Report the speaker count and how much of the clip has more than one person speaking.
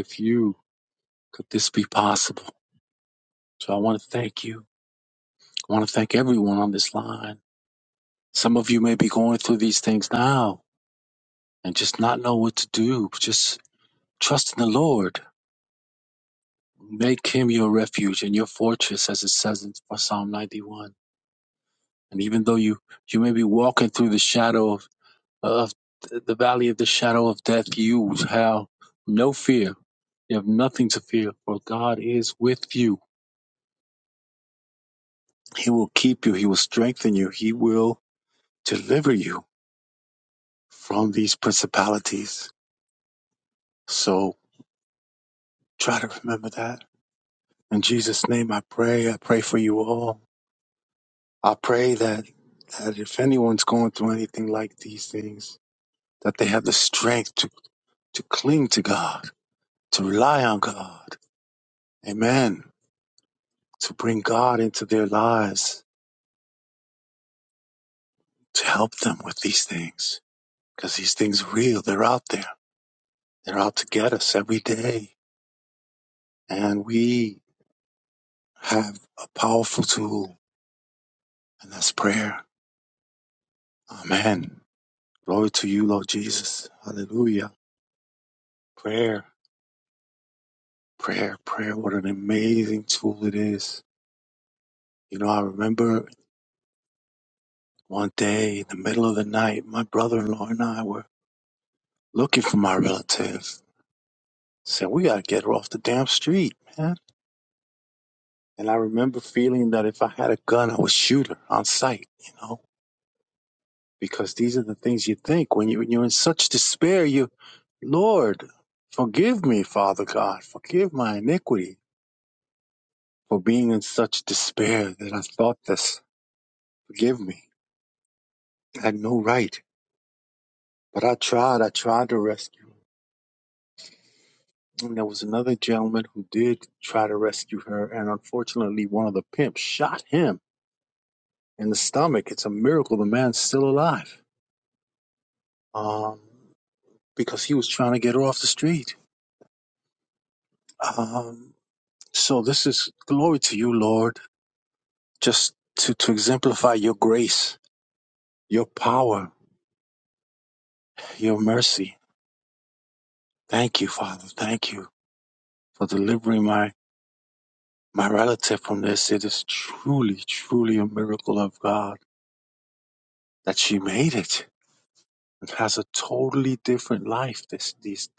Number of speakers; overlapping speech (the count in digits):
1, no overlap